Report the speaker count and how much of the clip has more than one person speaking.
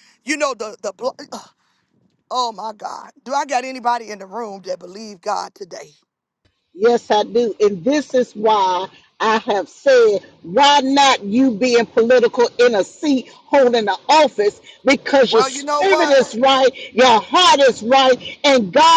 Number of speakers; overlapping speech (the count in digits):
2, about 4%